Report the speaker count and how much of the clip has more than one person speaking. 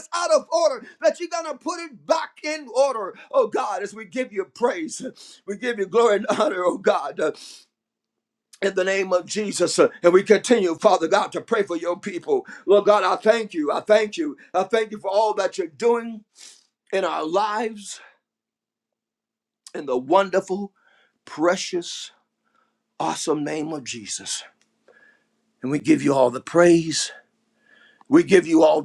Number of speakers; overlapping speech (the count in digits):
1, no overlap